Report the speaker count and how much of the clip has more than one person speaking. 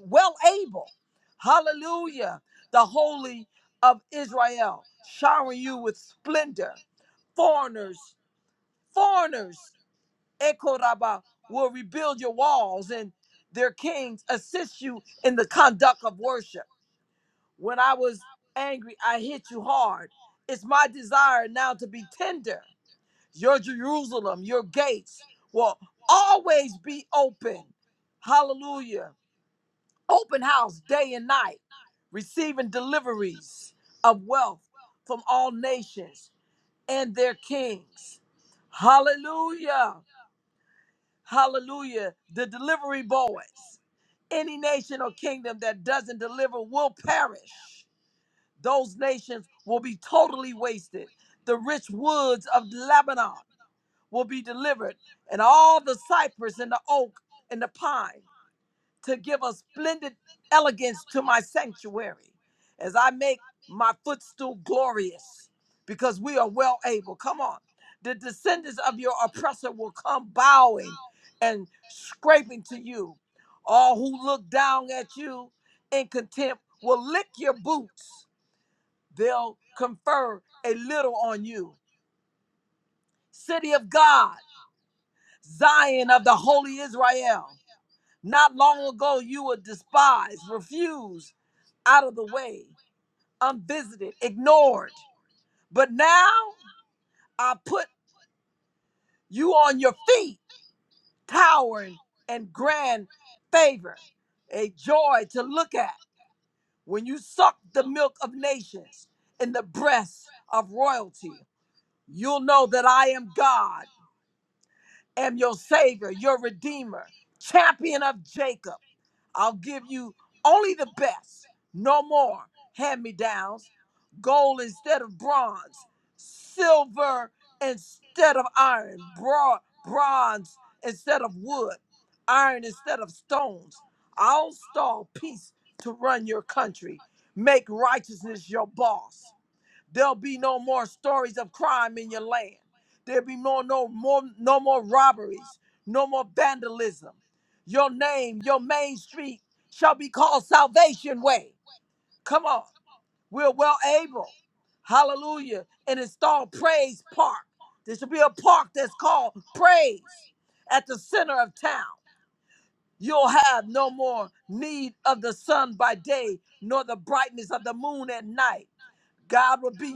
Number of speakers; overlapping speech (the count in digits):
1, no overlap